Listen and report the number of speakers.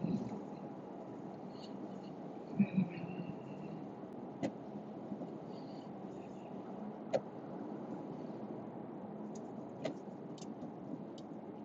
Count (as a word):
zero